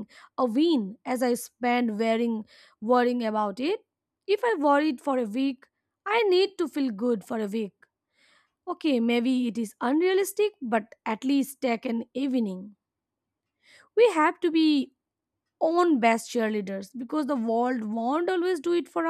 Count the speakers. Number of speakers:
1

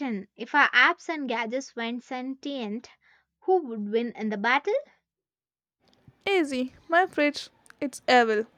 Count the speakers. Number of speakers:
2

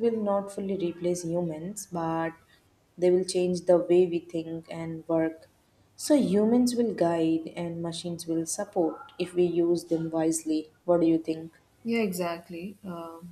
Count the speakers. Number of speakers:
2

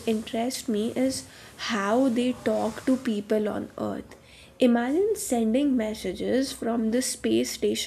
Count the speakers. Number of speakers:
1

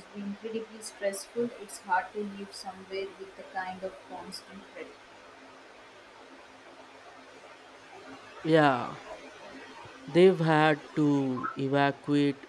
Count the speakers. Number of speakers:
2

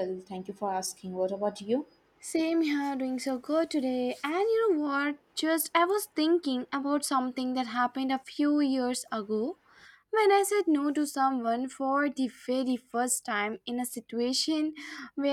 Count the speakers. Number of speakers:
2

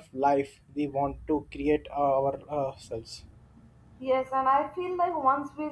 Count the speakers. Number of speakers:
2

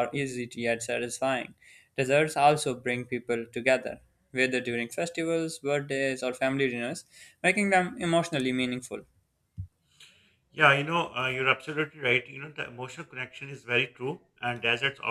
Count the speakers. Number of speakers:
2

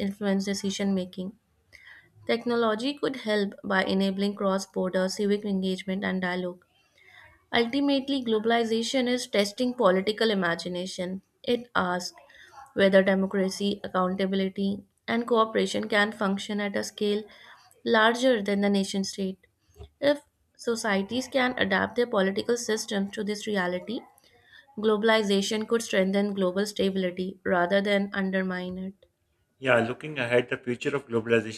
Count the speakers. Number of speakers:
2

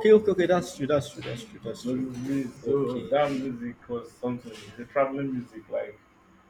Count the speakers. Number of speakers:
2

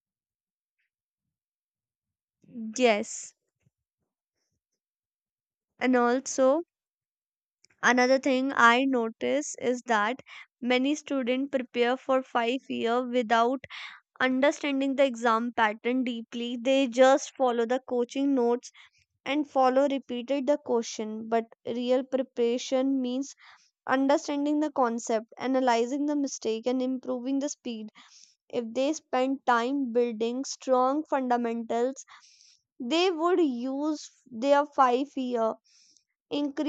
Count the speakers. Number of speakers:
1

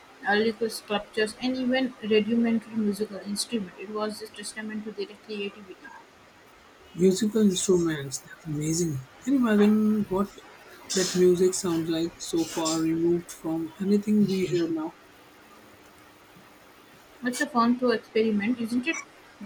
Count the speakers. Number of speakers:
2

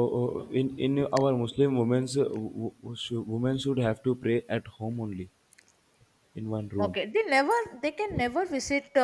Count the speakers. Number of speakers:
2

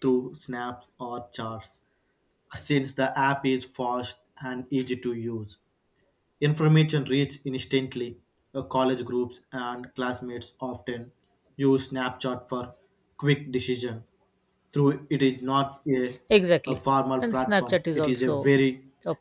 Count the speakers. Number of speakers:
2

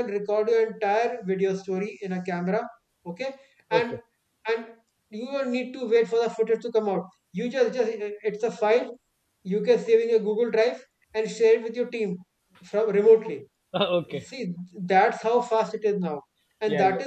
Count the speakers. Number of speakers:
2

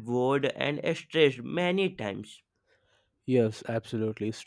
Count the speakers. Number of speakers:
2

